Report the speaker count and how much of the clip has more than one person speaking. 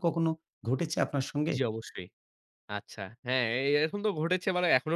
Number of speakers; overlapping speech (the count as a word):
two, about 2%